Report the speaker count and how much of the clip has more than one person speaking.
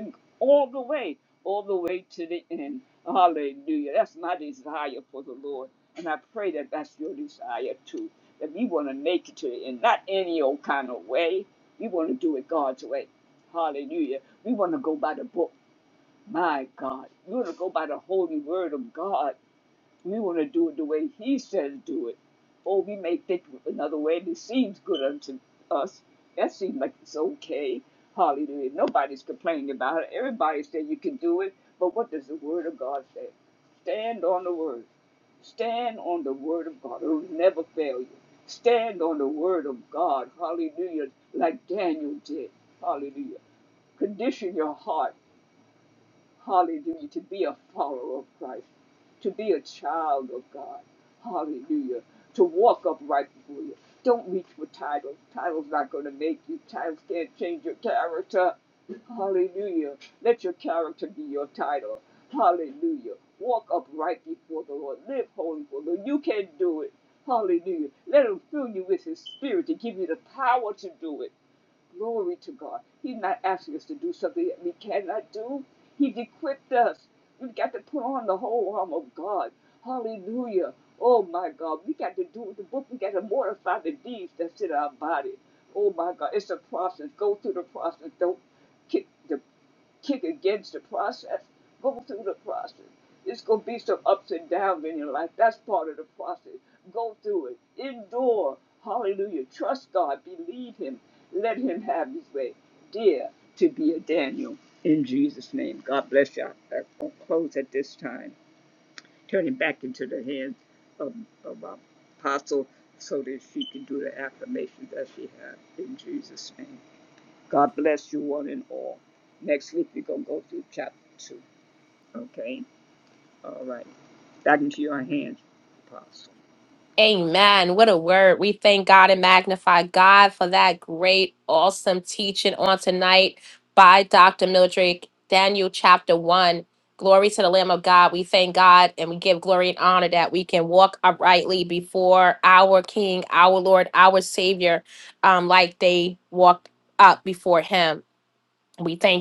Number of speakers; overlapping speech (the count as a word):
two, no overlap